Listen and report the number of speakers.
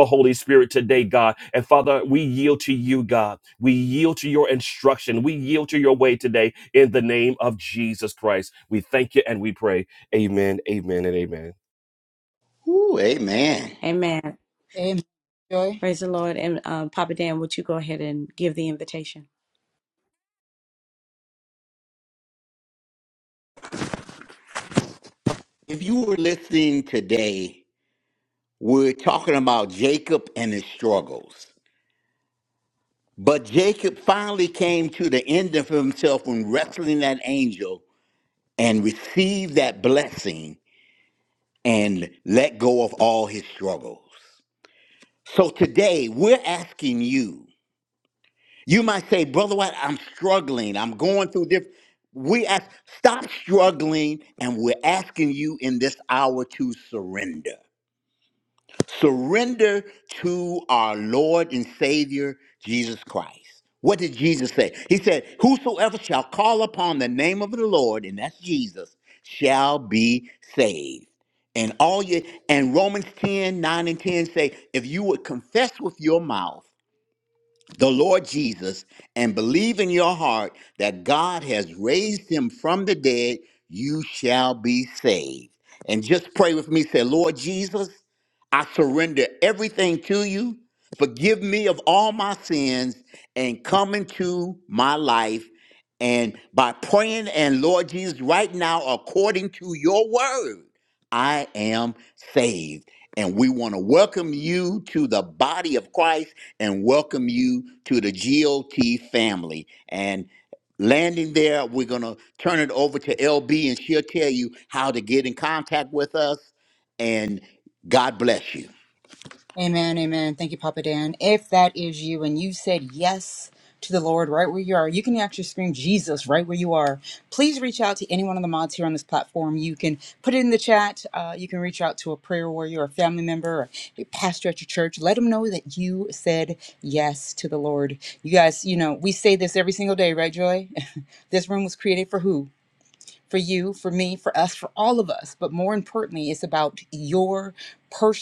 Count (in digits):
4